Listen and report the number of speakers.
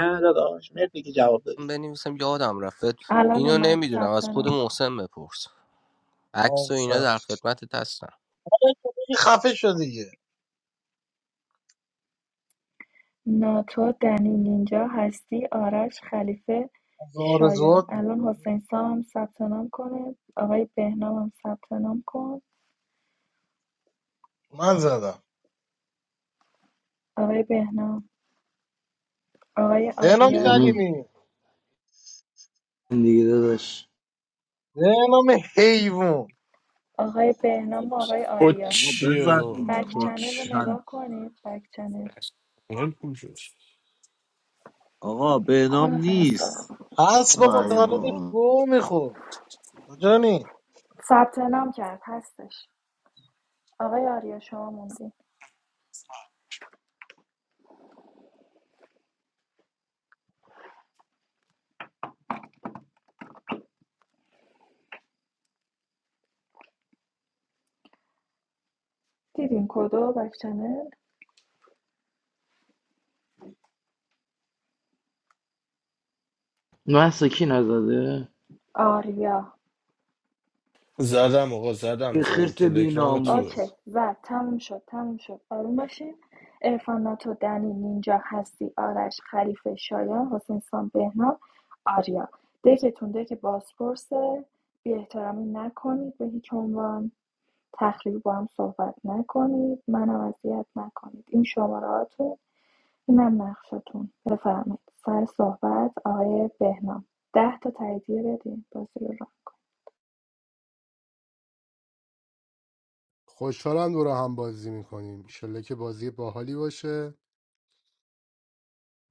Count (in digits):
8